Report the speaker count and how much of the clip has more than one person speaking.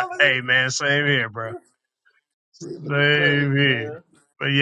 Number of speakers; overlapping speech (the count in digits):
2, about 23%